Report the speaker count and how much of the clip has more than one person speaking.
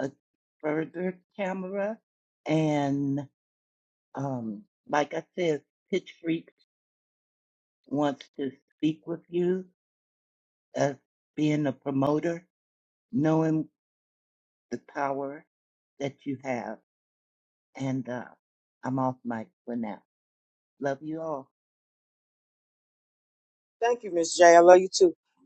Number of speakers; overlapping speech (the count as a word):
two, no overlap